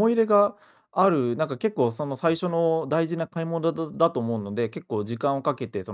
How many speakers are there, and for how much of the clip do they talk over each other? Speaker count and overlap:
1, no overlap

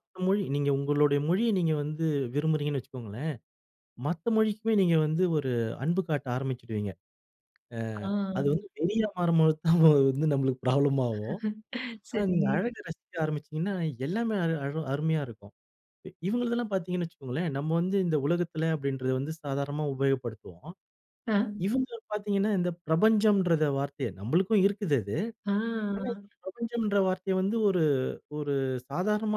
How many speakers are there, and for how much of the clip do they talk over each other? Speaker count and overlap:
2, about 2%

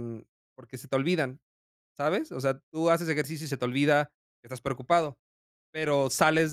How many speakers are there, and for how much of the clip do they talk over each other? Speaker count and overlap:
1, no overlap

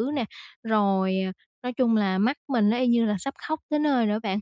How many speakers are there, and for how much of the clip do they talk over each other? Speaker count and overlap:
1, no overlap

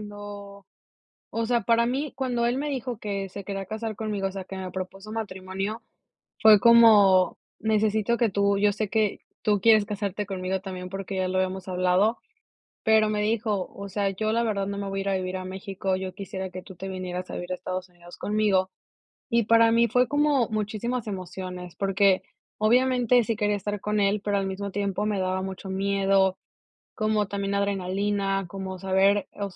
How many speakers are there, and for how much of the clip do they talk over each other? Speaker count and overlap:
1, no overlap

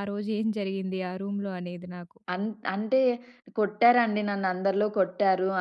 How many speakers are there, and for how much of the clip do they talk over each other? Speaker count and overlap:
2, no overlap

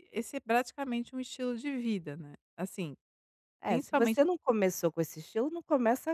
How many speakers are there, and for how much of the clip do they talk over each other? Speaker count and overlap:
2, about 7%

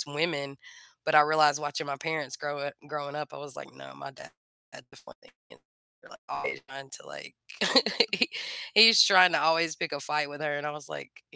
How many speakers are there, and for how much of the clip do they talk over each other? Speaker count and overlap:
1, no overlap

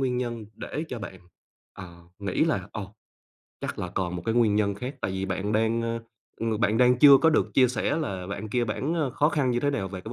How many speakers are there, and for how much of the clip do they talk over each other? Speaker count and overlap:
1, no overlap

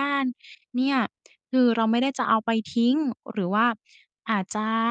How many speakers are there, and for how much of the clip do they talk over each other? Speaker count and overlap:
1, no overlap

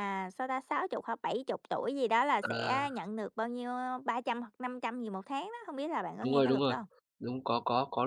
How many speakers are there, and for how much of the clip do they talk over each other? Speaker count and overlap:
2, about 8%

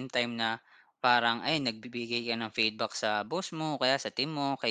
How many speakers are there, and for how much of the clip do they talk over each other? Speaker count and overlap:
1, no overlap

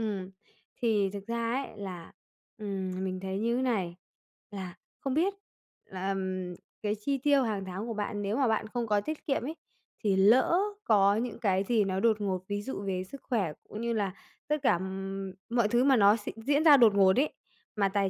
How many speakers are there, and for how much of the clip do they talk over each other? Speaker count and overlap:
1, no overlap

